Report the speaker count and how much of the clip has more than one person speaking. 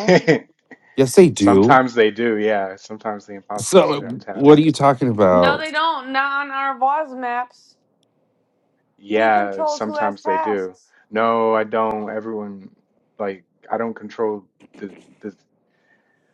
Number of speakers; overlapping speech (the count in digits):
3, about 19%